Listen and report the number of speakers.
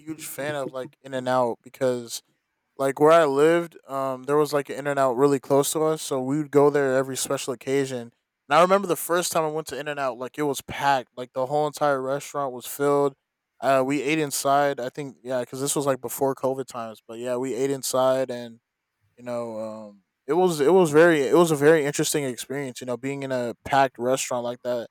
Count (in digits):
1